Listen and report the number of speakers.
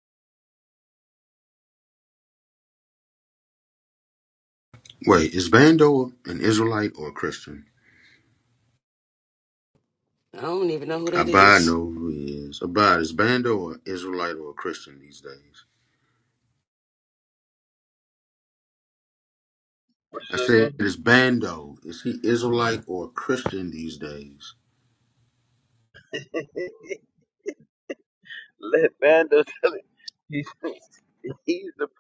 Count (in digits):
3